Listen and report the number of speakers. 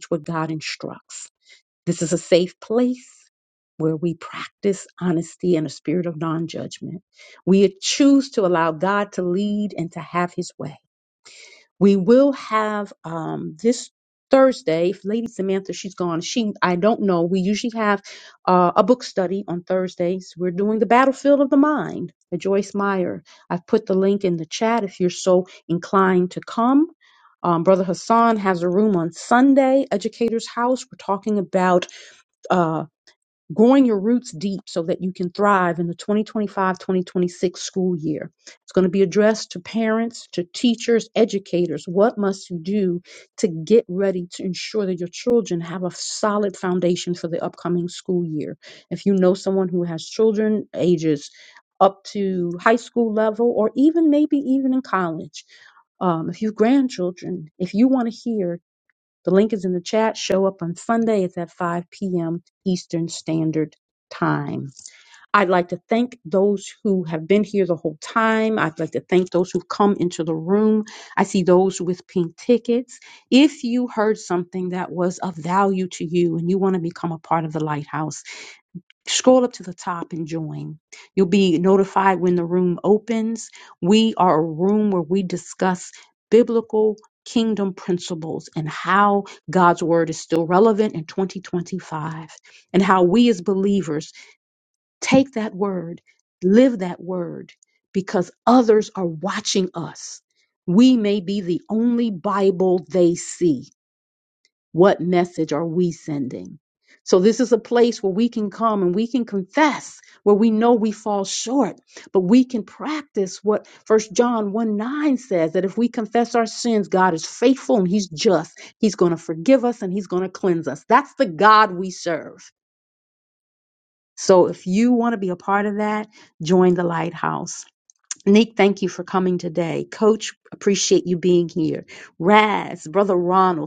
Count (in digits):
1